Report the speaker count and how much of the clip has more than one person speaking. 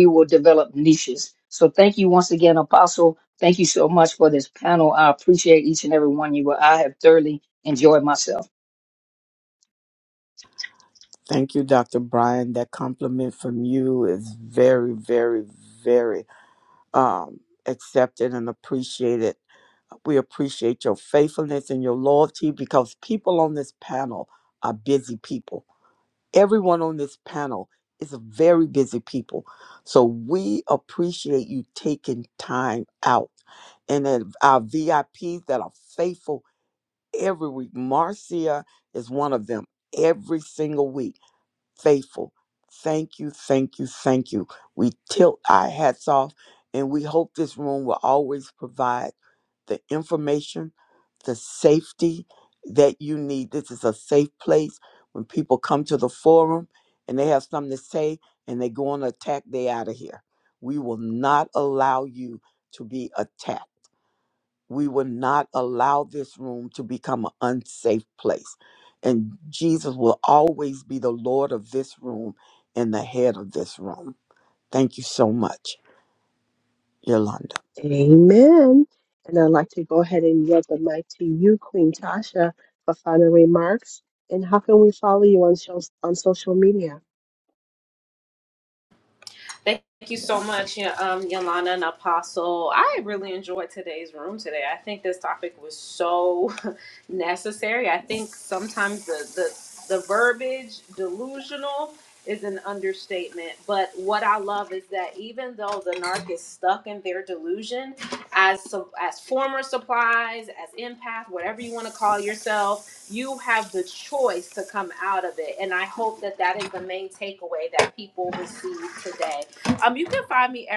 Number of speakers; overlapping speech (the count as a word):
four, no overlap